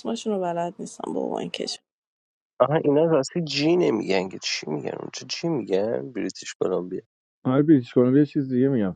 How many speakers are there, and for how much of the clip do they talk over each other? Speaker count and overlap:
three, no overlap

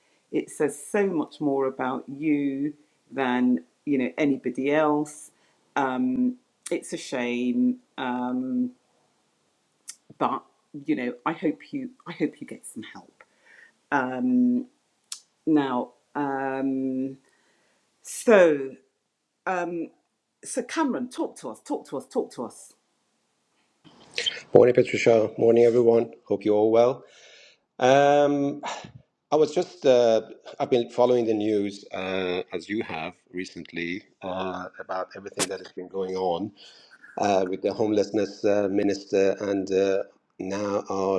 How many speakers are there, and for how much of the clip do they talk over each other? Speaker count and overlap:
two, no overlap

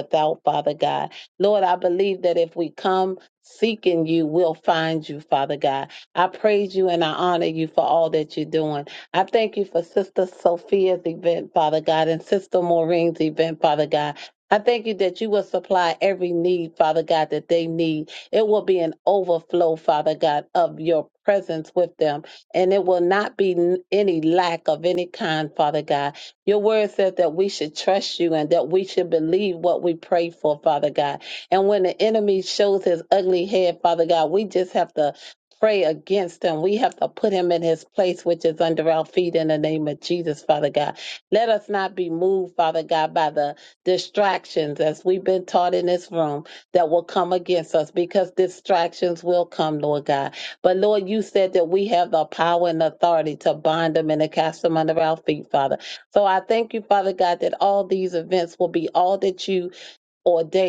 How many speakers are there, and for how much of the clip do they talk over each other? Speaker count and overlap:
one, no overlap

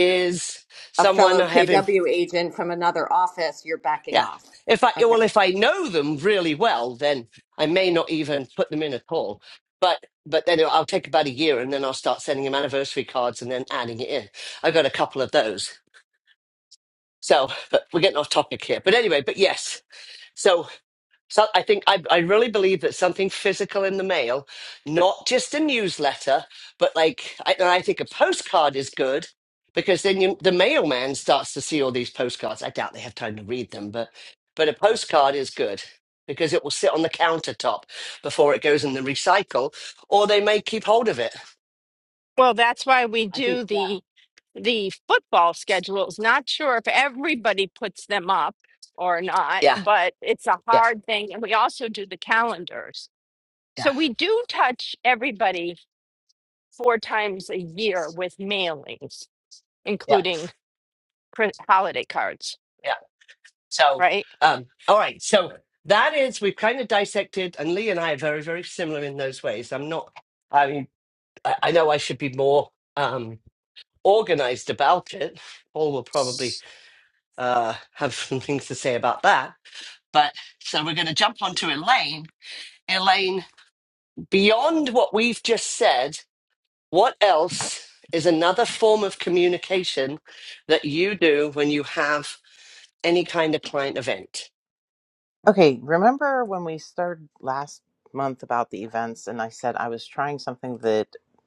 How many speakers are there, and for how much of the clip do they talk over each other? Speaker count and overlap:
four, about 2%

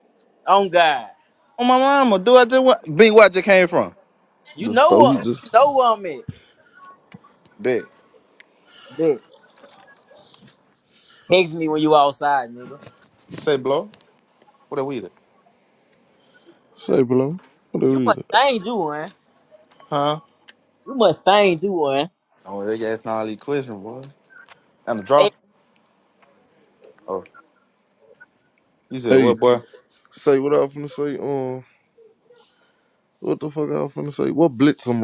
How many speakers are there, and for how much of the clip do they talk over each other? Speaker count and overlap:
three, about 4%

